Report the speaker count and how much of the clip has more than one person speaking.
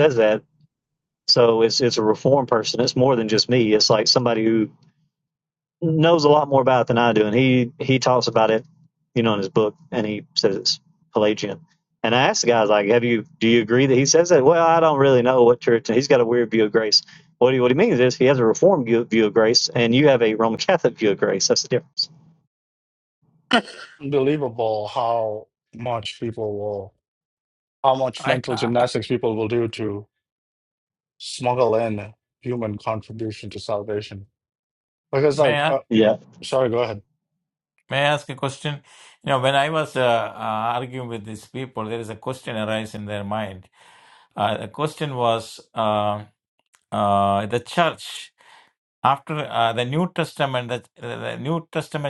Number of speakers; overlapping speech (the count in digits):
3, about 2%